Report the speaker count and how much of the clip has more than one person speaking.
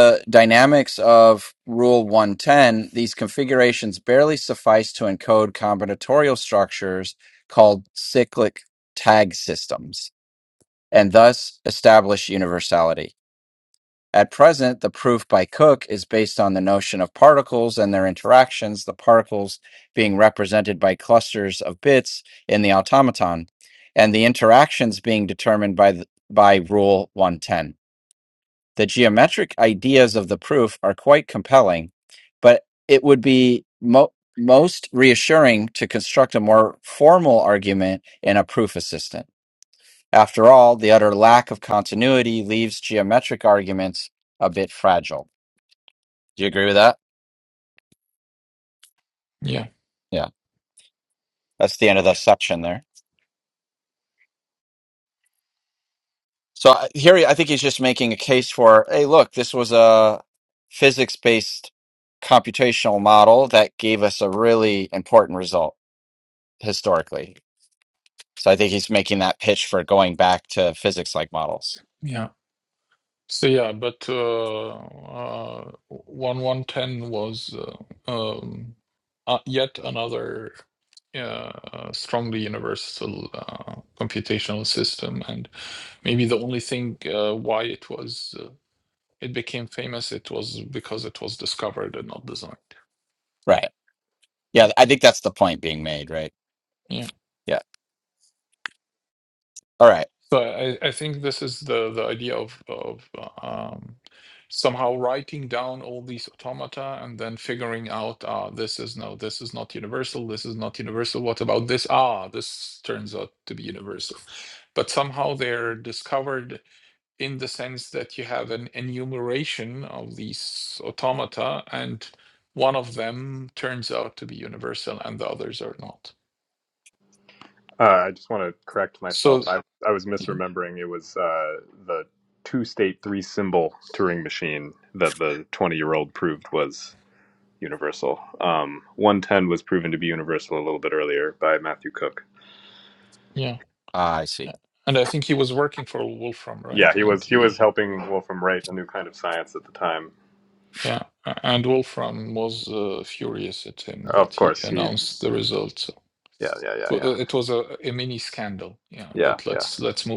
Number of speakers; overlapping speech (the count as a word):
three, about 2%